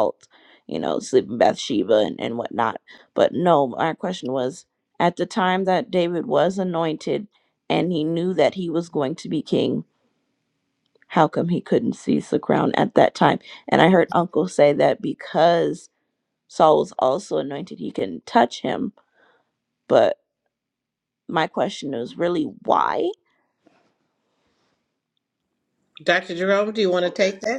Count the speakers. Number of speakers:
2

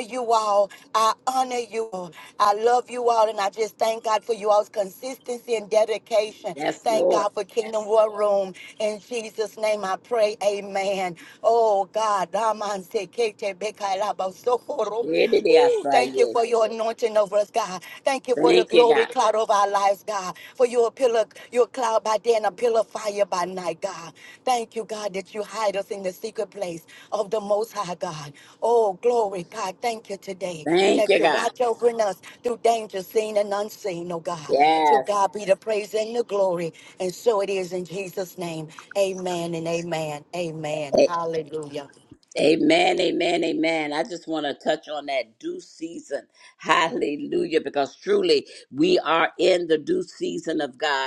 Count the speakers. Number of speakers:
2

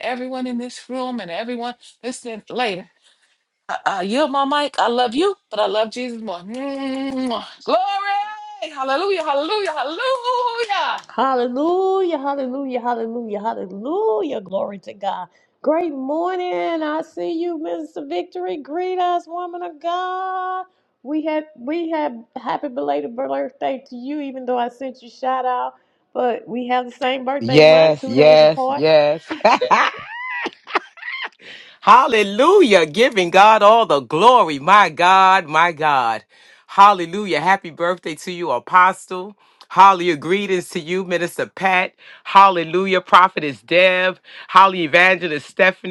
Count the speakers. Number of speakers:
3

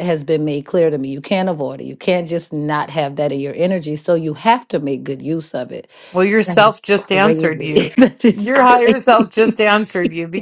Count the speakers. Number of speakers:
2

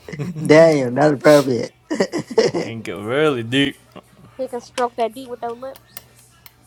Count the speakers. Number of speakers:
3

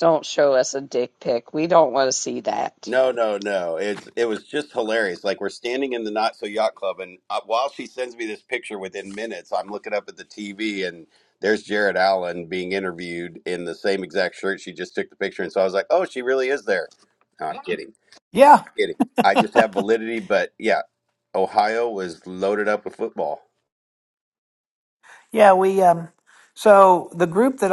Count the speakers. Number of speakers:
3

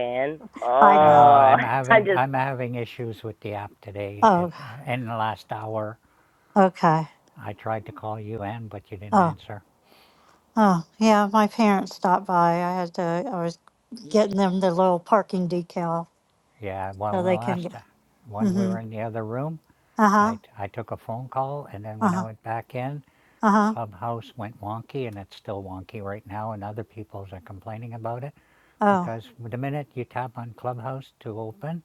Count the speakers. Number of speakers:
3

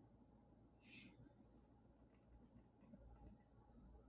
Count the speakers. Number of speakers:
0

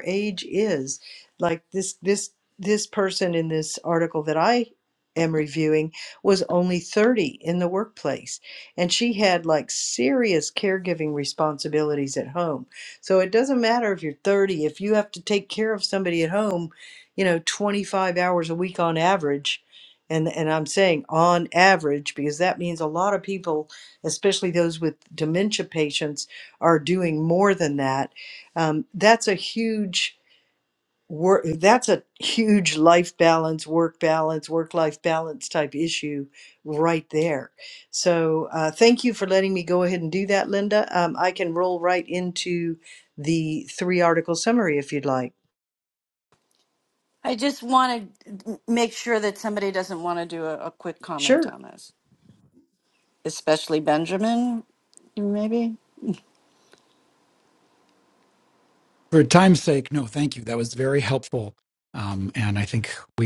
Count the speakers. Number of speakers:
3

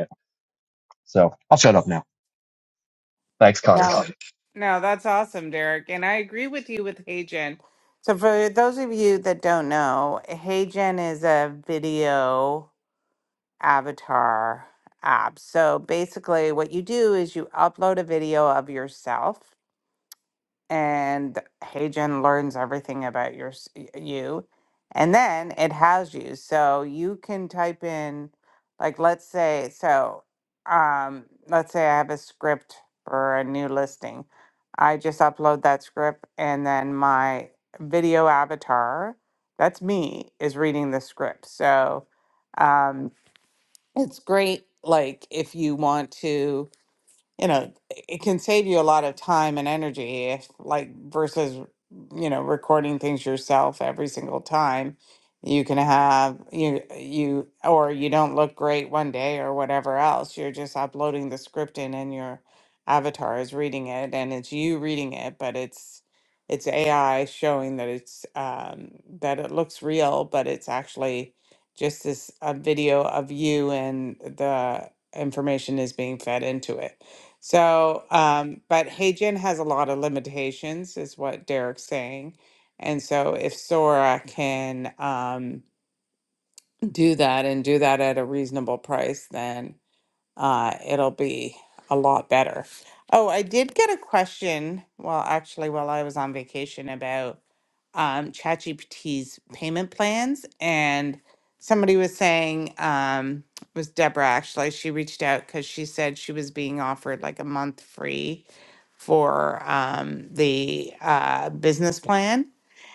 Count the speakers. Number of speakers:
2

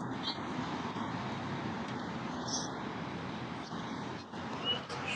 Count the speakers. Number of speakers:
0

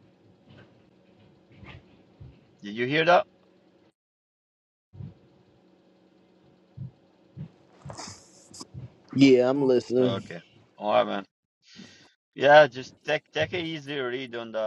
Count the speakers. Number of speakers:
2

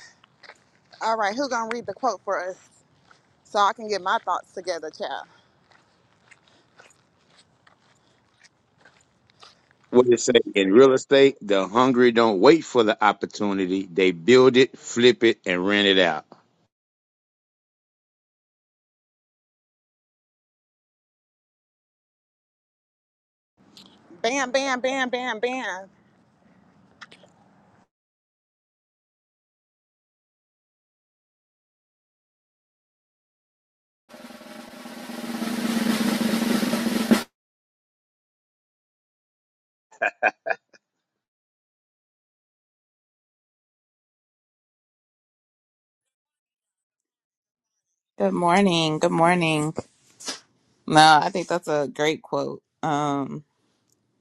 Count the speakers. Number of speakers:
3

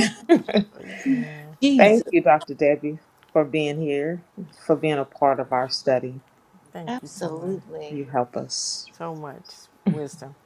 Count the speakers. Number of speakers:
3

